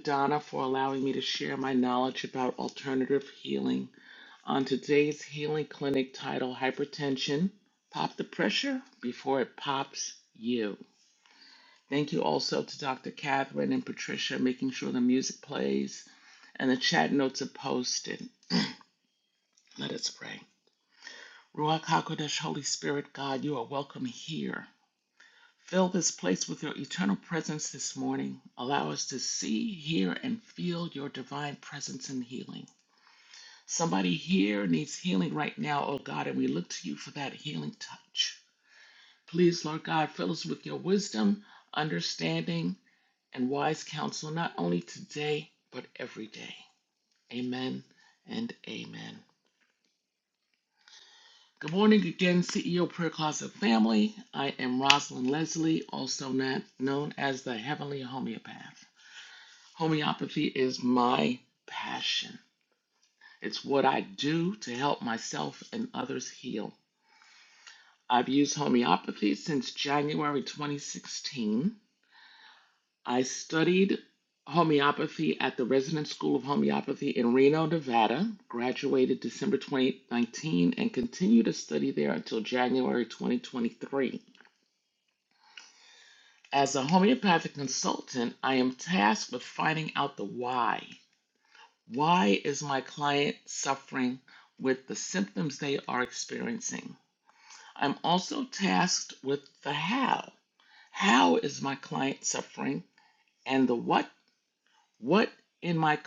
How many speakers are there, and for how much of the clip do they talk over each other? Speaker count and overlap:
1, no overlap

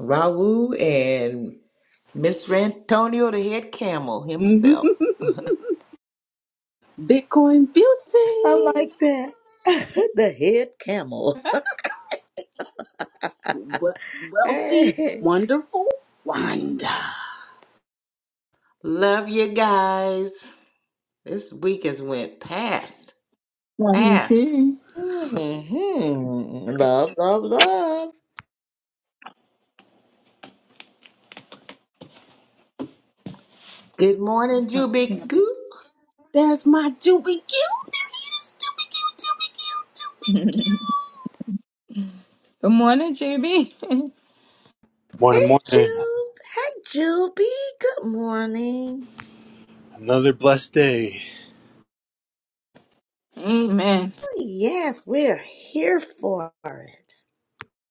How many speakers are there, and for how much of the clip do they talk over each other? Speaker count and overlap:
5, about 7%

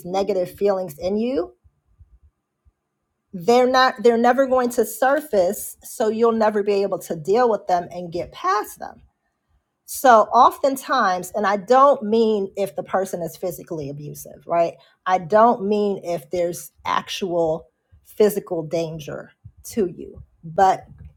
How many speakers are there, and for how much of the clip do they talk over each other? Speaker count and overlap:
1, no overlap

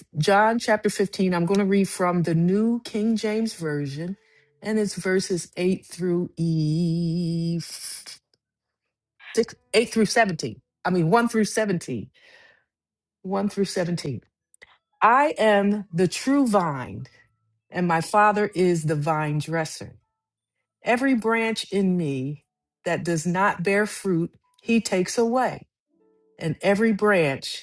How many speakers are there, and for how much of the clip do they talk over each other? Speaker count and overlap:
1, no overlap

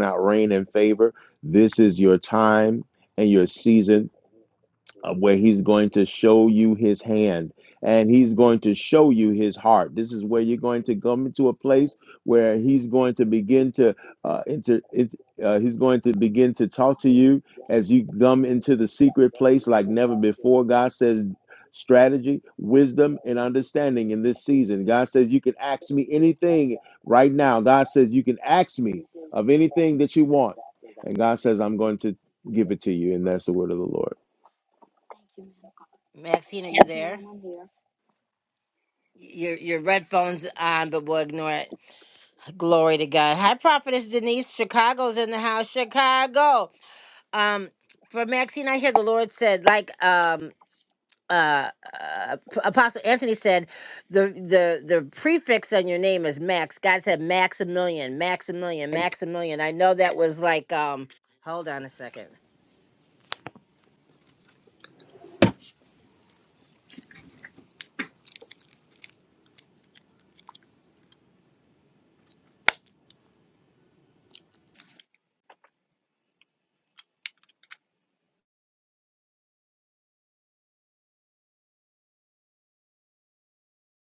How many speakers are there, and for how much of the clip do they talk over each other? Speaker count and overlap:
2, no overlap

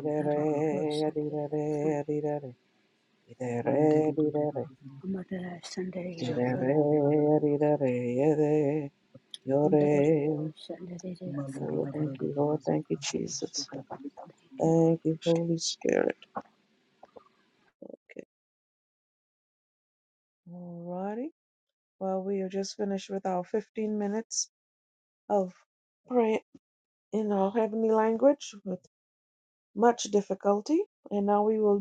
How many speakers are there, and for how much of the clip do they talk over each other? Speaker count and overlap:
3, about 16%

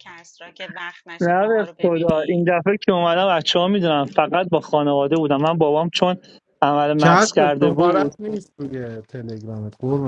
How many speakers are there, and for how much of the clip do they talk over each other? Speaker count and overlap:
3, about 24%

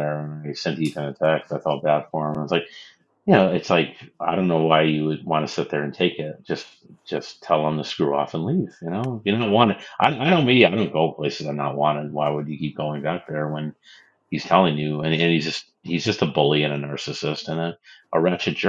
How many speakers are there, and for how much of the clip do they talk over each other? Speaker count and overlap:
1, no overlap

